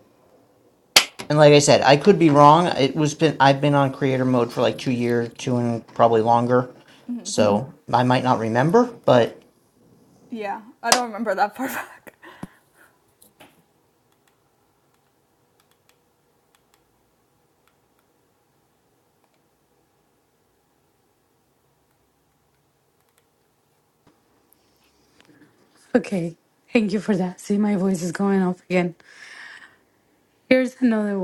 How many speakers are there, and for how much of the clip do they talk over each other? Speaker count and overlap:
3, no overlap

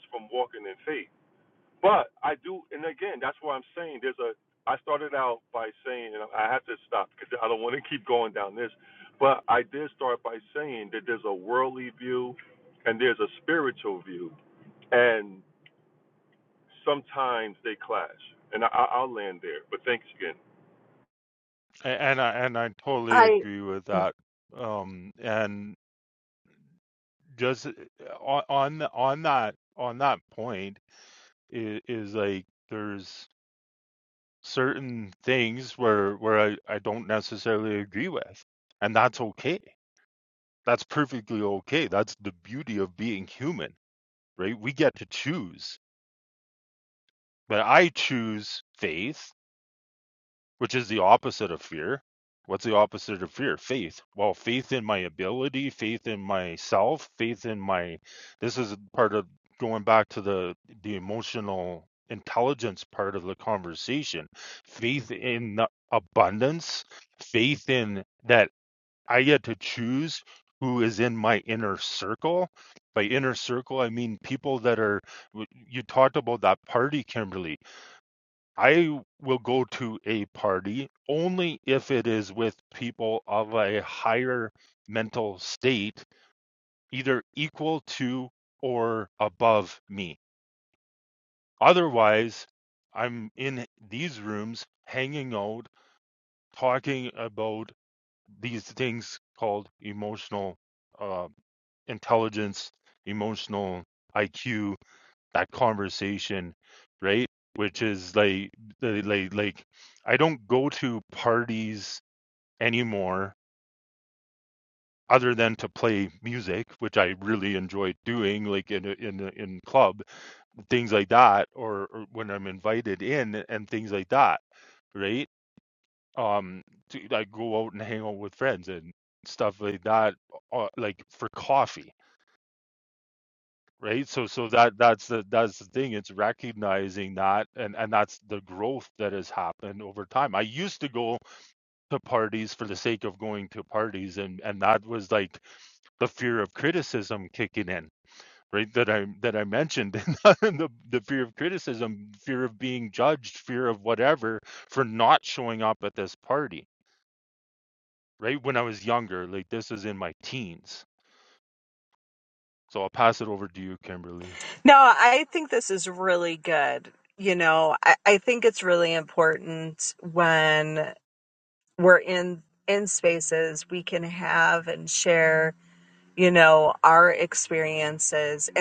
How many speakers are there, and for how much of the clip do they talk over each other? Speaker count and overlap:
3, no overlap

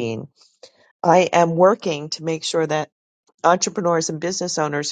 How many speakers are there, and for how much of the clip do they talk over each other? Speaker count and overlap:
1, no overlap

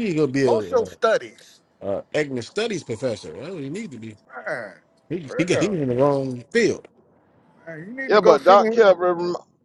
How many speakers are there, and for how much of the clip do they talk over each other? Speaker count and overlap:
3, about 13%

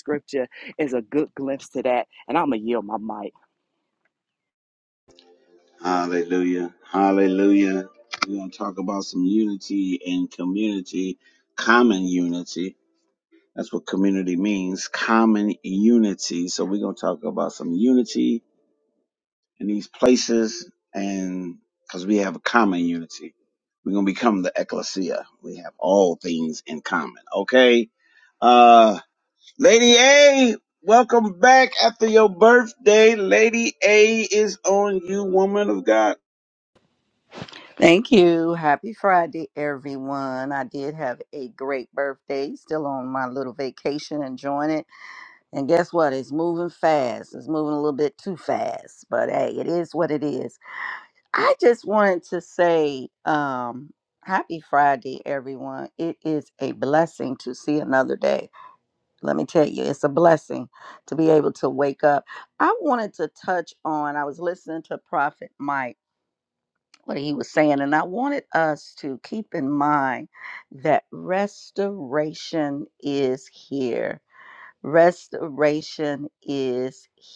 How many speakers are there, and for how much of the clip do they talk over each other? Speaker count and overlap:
3, no overlap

